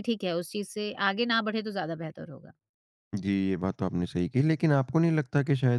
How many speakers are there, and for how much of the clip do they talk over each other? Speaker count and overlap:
2, no overlap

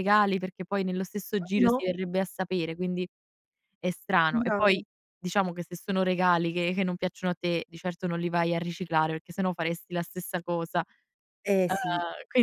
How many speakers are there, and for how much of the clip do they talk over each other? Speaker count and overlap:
2, about 7%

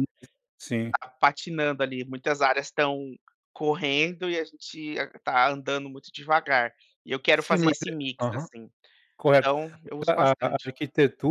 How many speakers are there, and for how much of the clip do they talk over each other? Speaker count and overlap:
2, about 15%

